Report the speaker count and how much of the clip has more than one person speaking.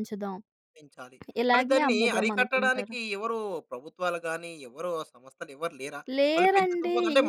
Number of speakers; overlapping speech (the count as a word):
two, about 32%